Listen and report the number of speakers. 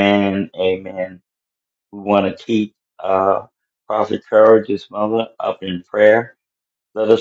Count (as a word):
one